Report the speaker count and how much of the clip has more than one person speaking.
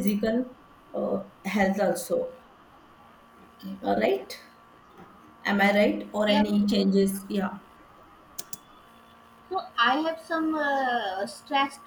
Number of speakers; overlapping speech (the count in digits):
2, about 2%